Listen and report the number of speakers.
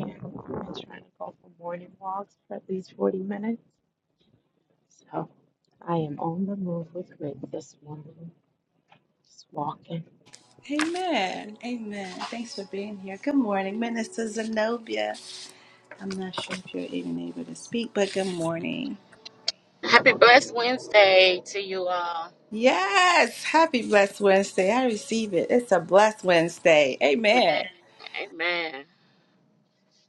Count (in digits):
3